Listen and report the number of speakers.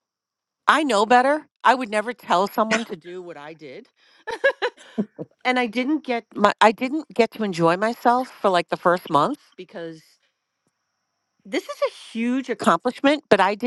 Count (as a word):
one